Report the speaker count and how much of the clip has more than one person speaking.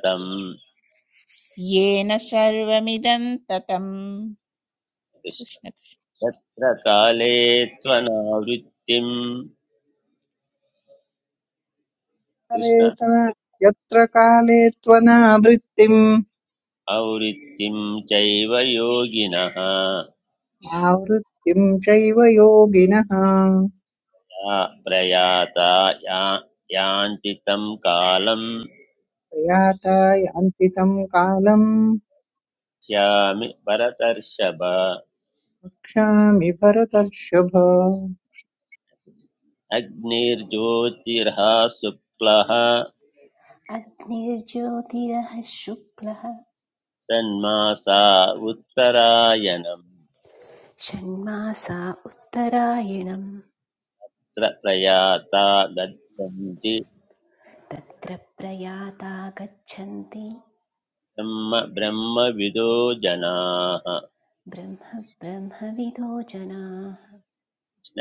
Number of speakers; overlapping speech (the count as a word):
four, about 1%